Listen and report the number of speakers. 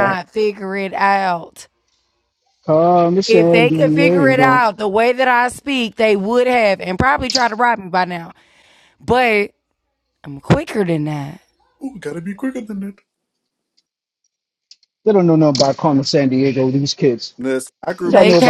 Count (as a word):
three